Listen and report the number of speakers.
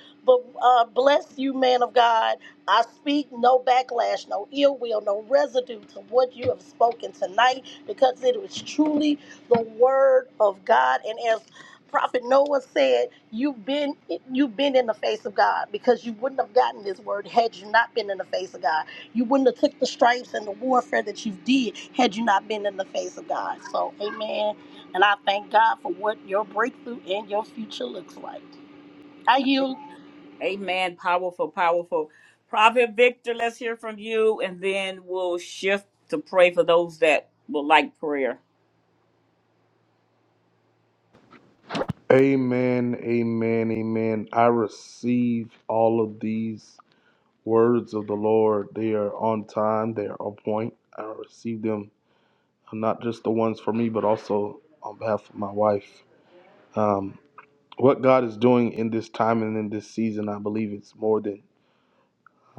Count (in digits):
3